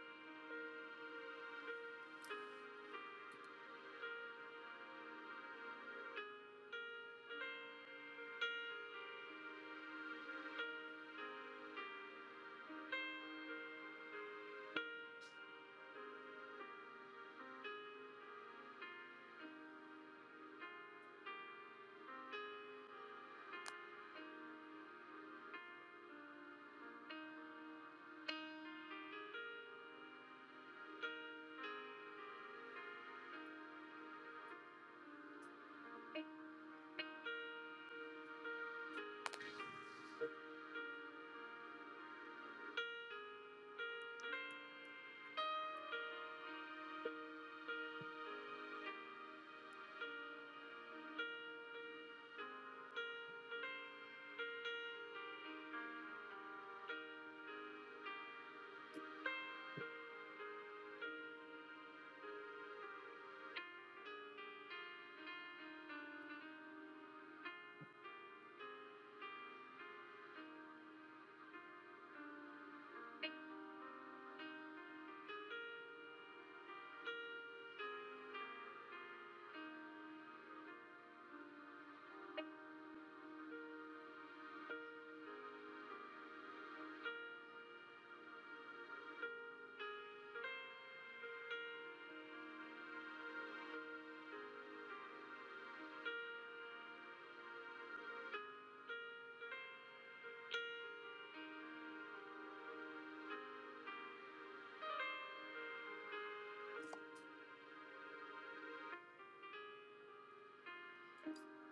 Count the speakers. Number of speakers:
zero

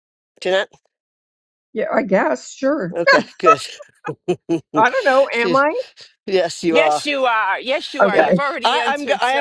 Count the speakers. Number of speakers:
three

